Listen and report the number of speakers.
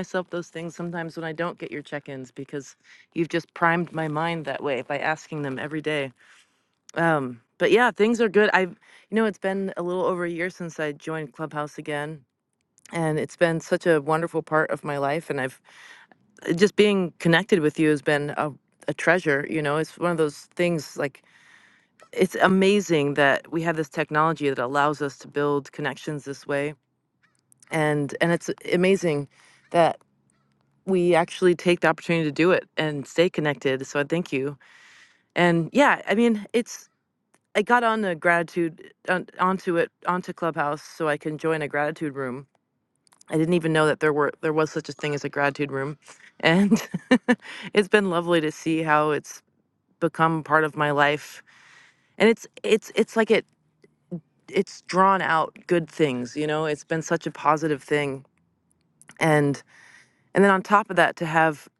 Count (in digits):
1